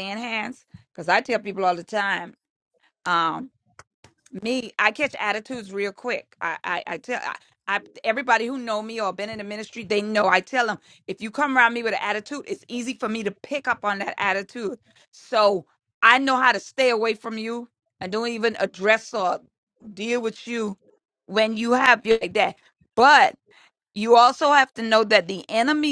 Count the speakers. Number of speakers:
1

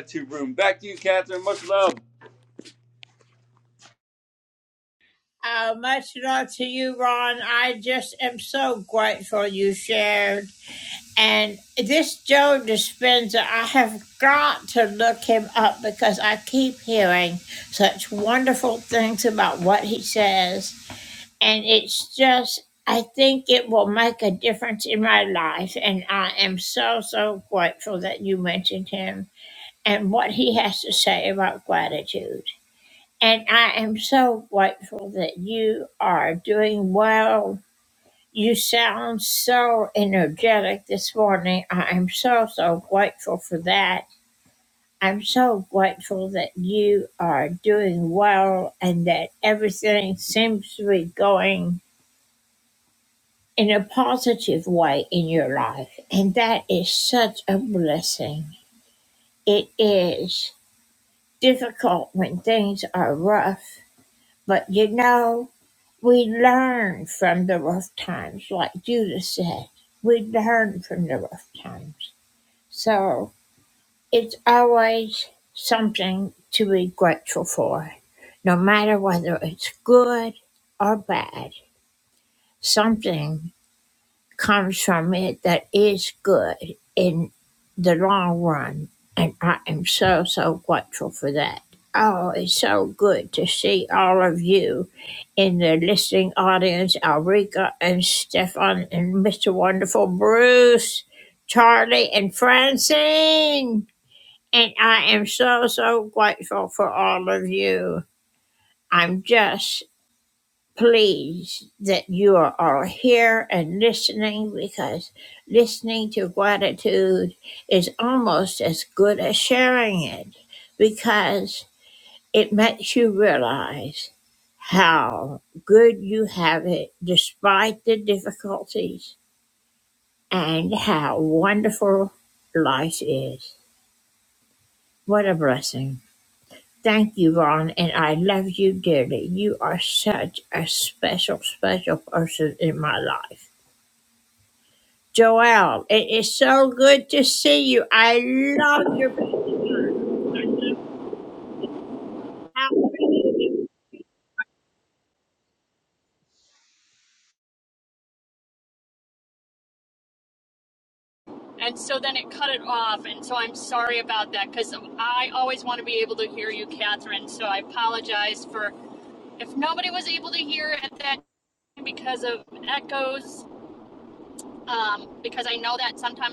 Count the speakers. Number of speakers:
3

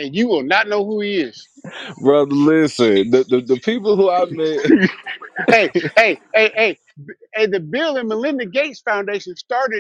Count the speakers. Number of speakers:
2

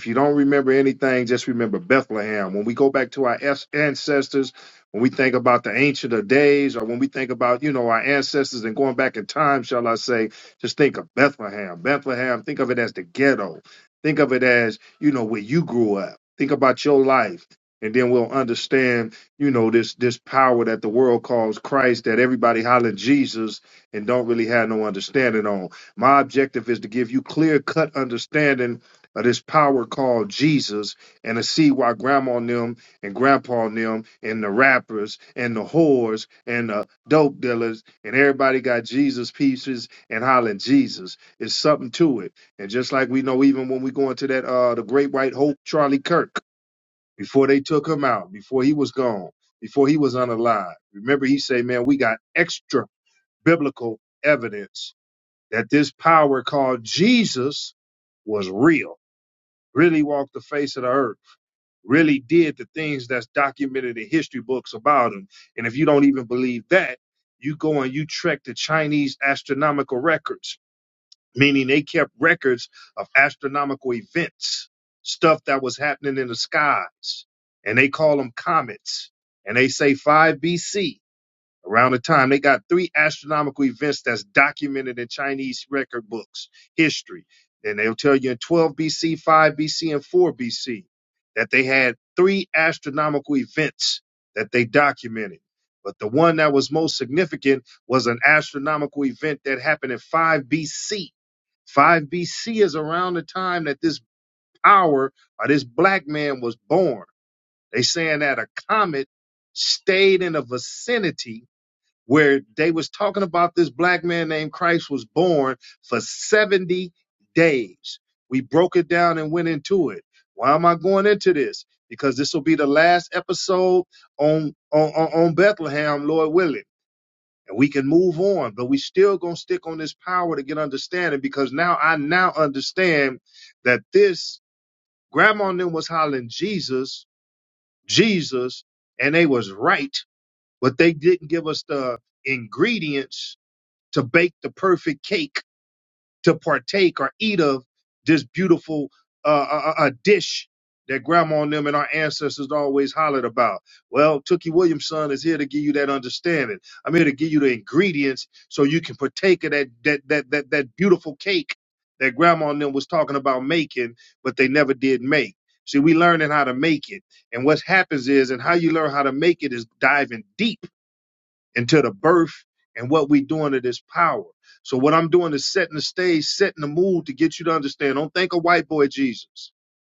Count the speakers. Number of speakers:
1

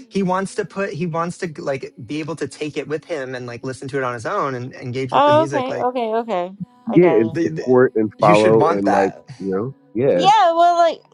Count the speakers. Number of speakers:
3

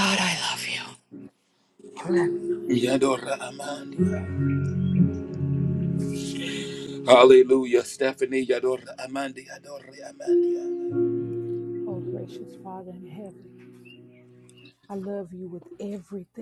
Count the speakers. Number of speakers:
3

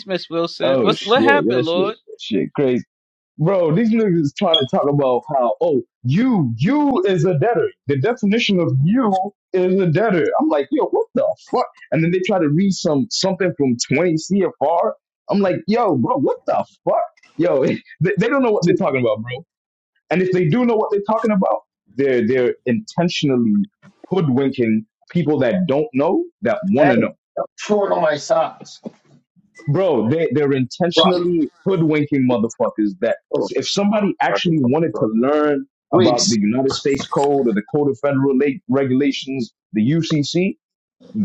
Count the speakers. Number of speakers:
3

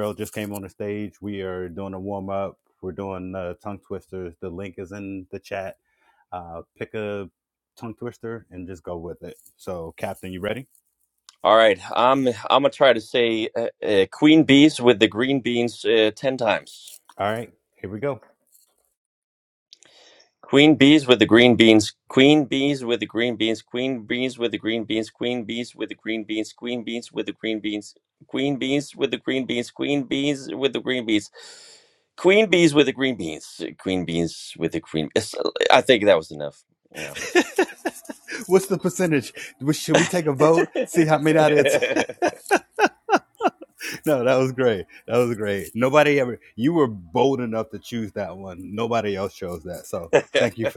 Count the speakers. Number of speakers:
2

